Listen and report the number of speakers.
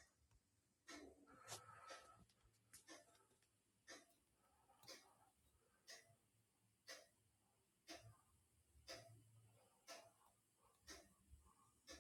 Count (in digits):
0